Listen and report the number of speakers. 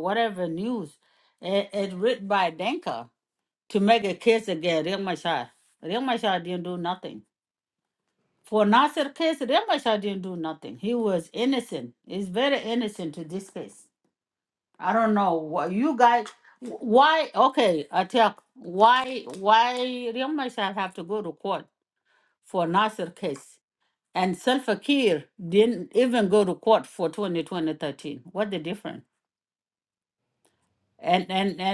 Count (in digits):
1